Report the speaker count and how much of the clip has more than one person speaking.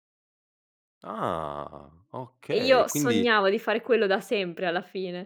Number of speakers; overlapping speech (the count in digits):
2, about 15%